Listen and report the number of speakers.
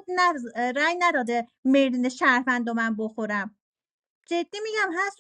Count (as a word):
one